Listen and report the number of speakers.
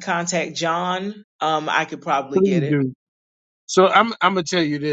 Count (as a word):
two